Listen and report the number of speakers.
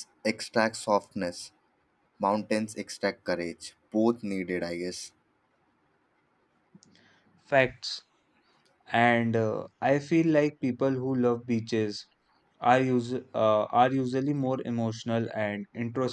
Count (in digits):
2